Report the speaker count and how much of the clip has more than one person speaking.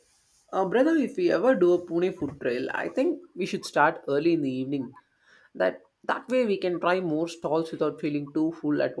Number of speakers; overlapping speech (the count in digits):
1, no overlap